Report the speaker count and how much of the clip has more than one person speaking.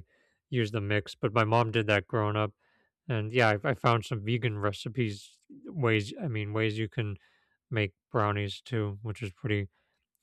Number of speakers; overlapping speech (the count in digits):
1, no overlap